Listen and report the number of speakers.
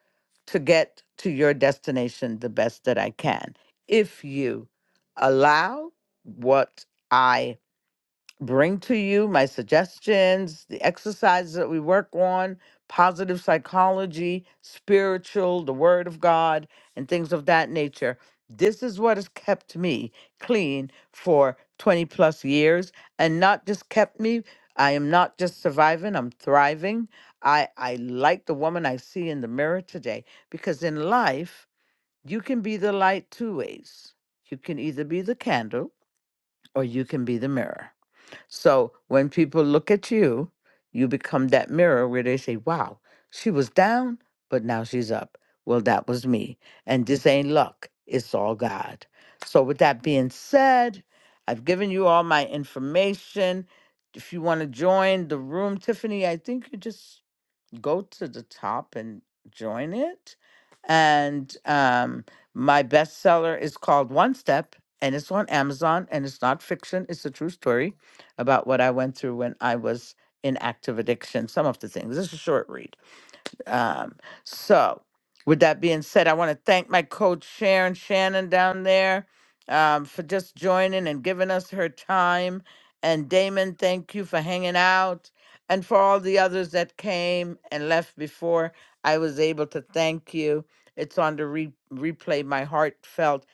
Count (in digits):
1